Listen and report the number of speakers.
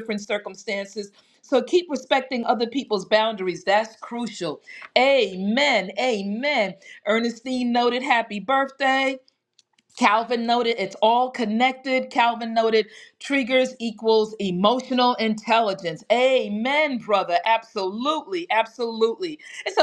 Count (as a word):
one